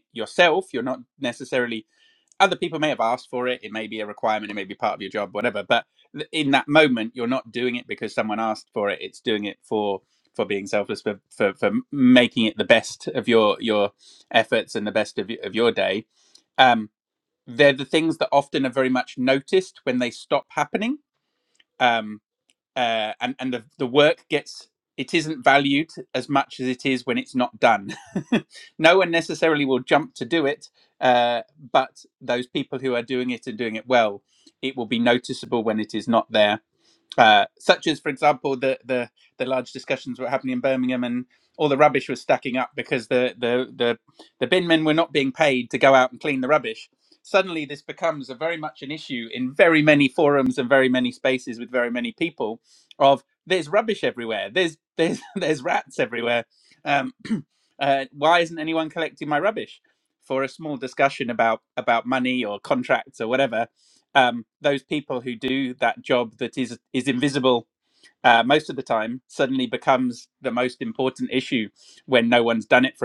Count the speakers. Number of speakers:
one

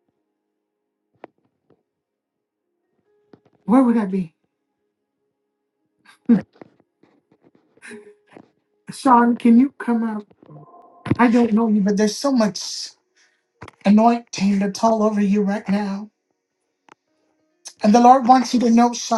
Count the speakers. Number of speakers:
one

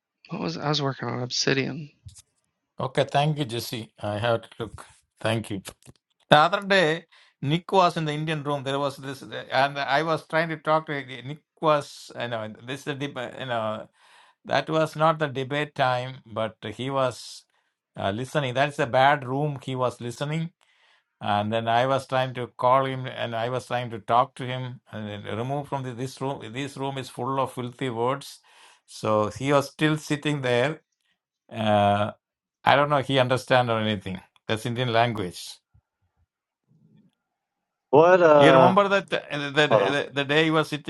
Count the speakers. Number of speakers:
three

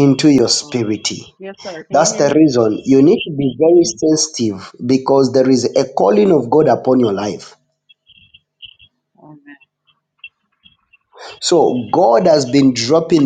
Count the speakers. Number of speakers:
two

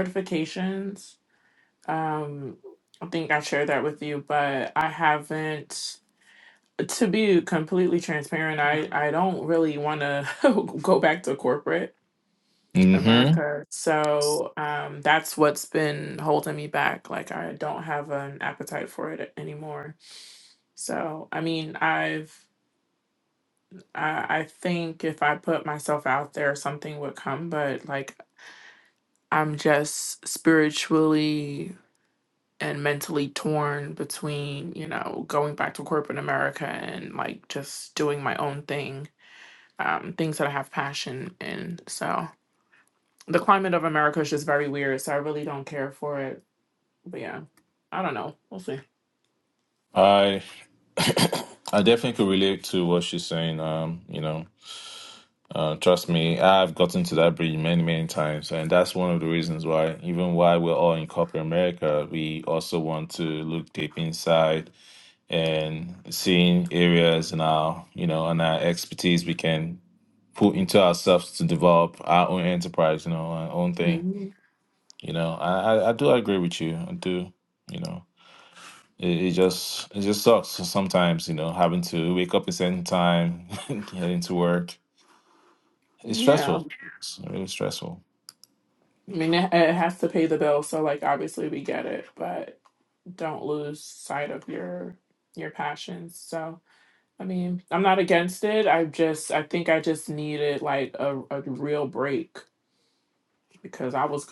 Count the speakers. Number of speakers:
two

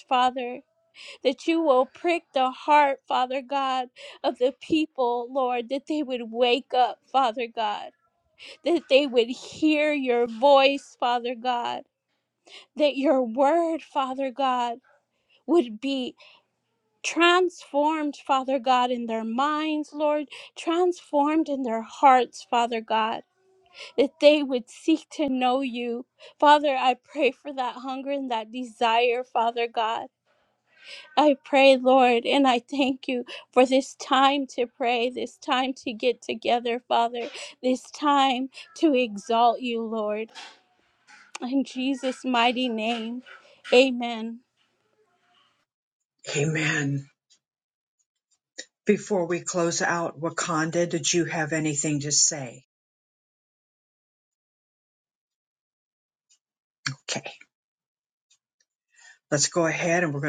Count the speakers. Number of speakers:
two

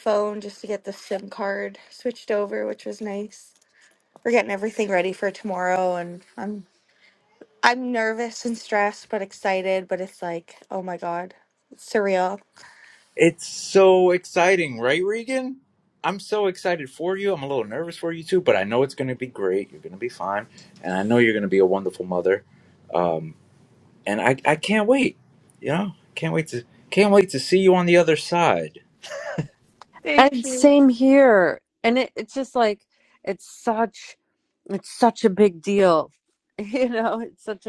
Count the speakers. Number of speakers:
three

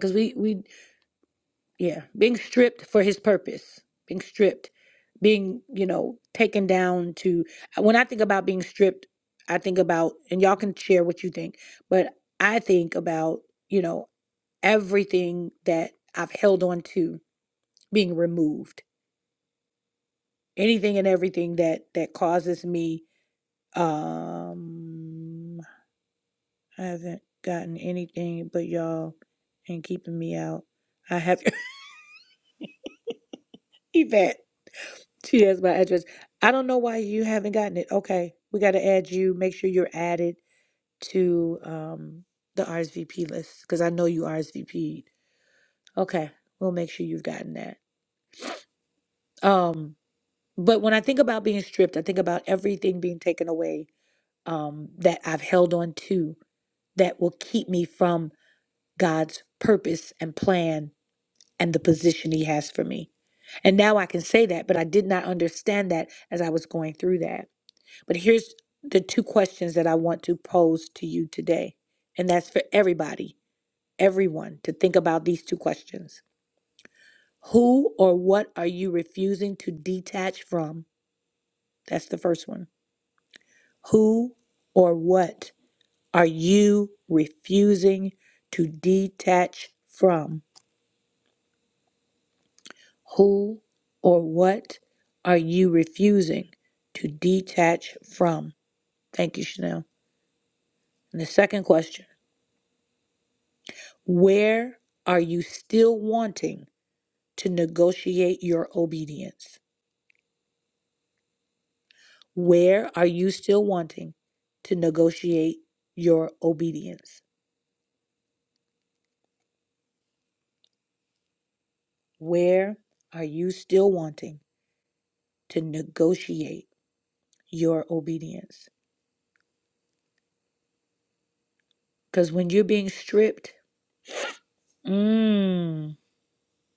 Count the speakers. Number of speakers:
one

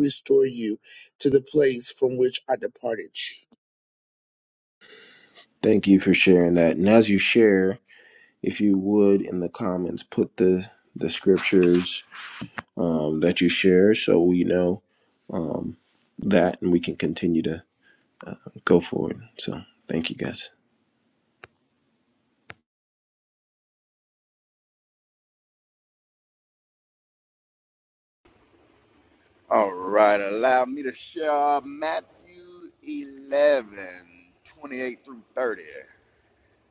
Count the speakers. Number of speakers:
three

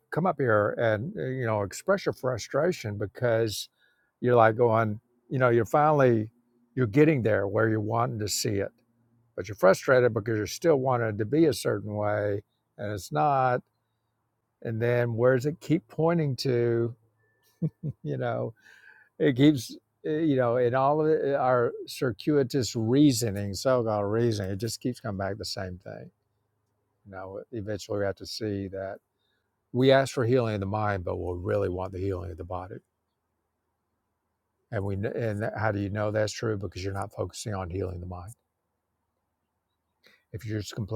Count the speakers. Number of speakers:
one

